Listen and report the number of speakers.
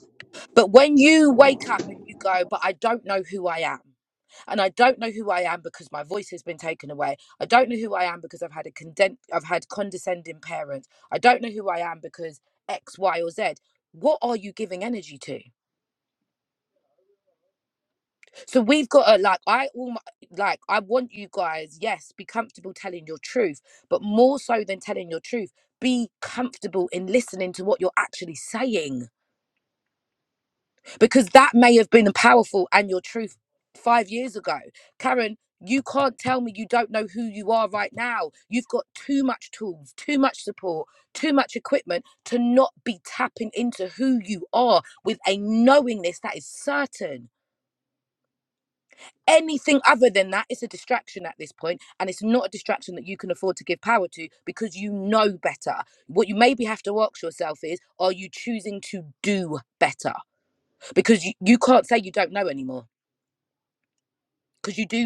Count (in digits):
1